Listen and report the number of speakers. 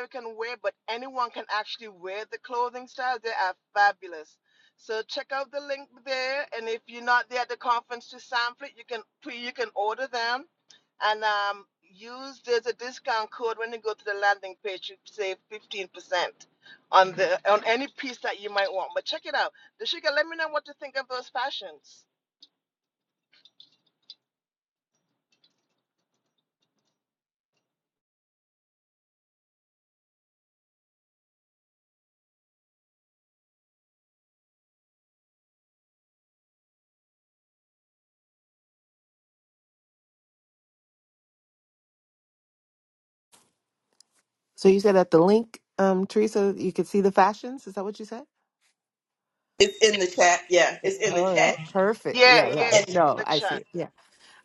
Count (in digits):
3